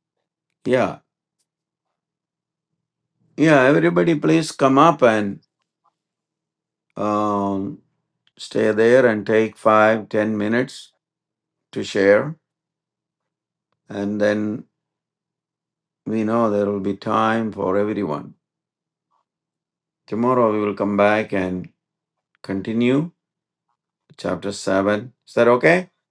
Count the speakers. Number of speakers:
one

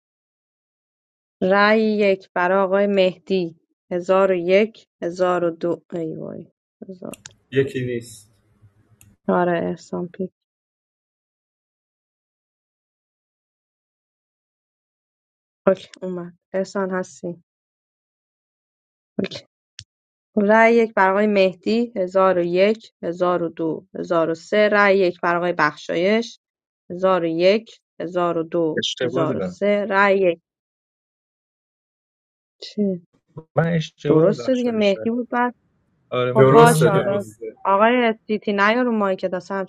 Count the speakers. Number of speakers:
three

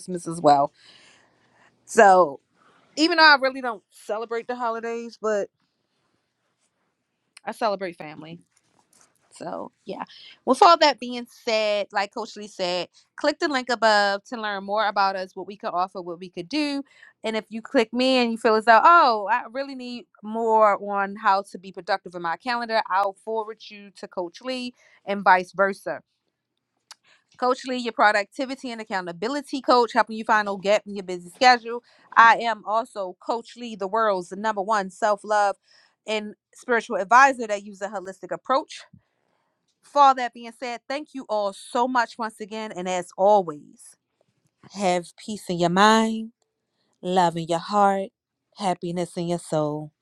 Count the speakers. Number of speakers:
one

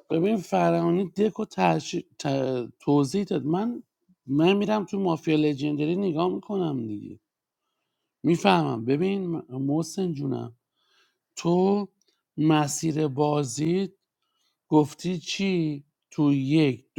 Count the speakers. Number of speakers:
one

